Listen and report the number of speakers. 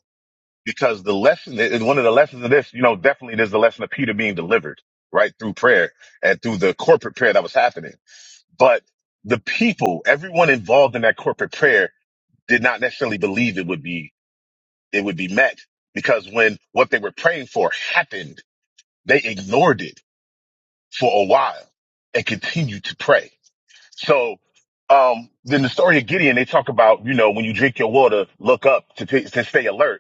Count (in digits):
1